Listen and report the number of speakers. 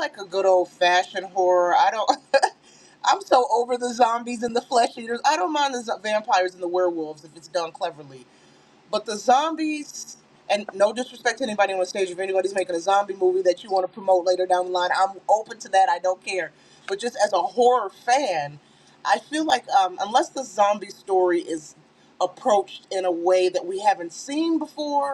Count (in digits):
1